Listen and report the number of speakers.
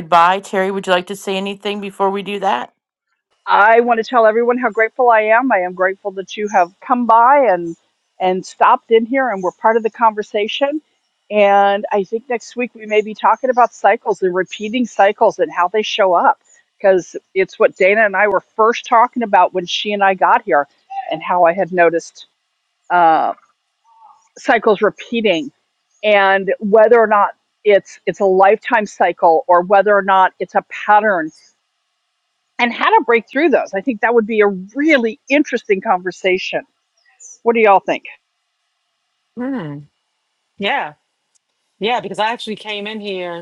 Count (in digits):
3